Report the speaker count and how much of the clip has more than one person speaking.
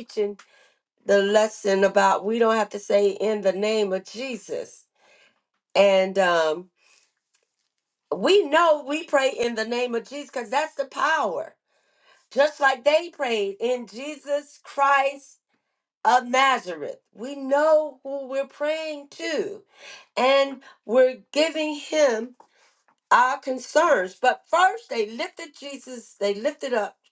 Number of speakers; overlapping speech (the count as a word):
one, no overlap